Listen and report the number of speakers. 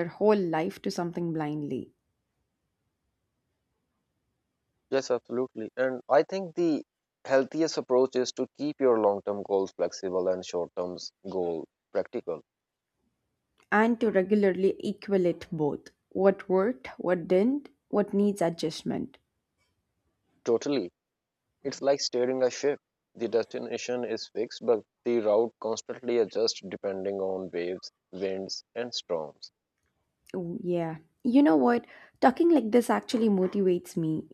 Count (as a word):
two